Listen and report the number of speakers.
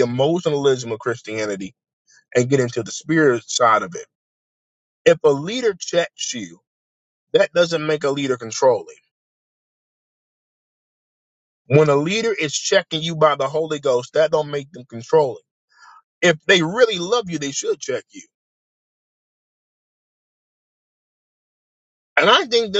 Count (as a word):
one